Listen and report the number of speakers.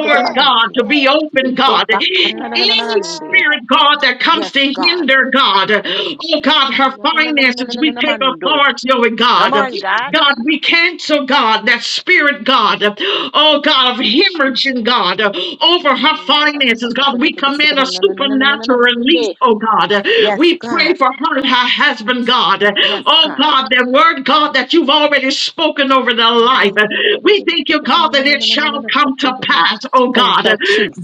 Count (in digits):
2